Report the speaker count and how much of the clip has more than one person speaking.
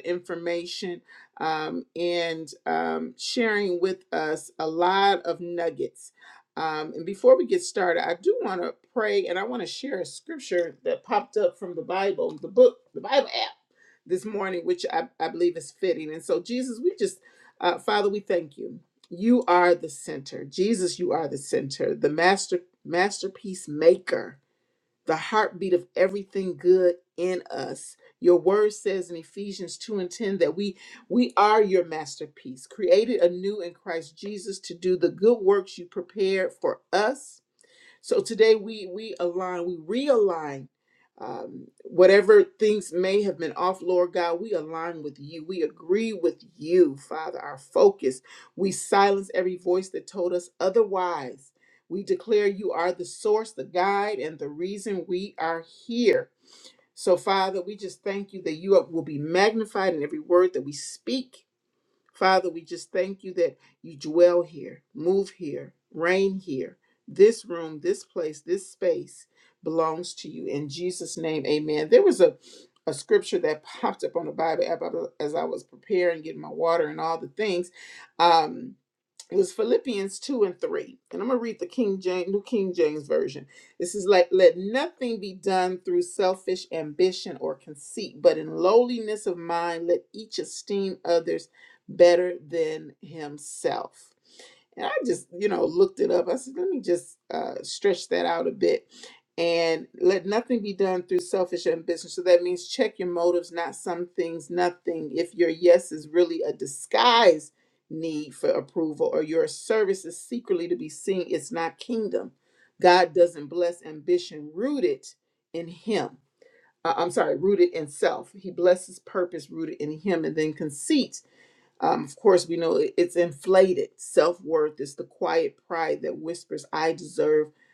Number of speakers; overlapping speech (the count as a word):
one, no overlap